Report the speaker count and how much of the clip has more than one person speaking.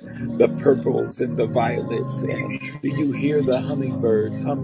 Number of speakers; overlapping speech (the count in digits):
1, no overlap